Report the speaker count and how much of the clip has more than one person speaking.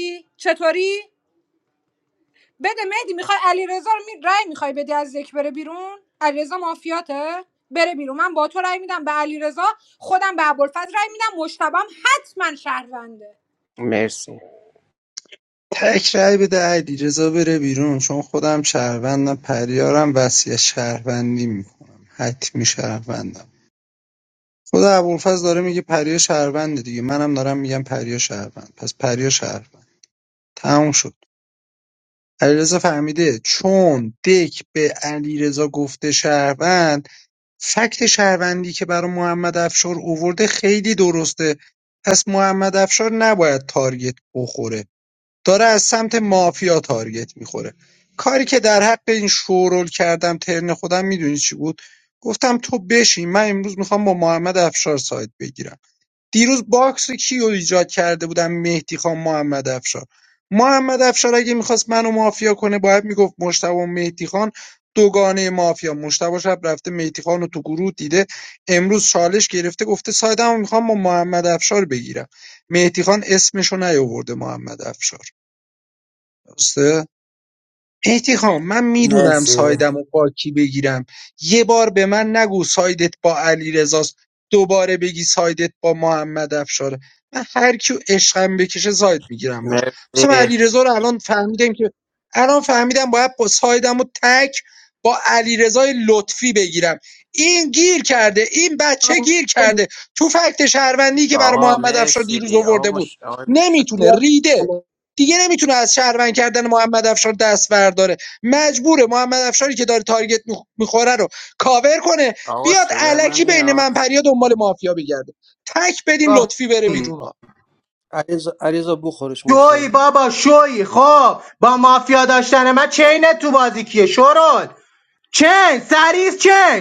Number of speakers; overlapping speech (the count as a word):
five, about 4%